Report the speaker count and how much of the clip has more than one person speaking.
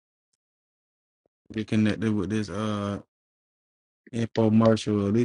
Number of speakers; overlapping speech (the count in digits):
1, no overlap